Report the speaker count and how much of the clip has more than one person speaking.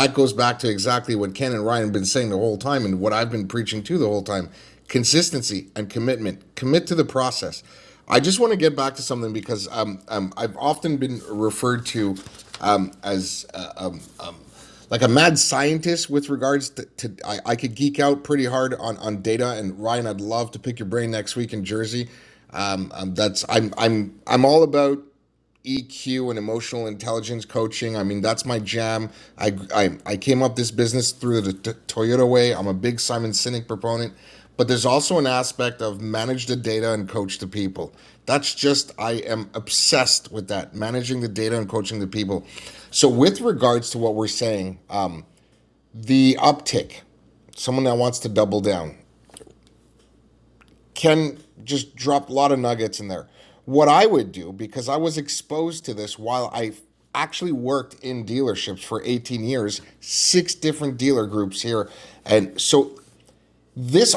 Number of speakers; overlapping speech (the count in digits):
1, no overlap